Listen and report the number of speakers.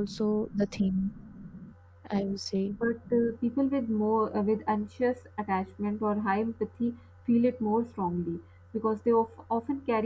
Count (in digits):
2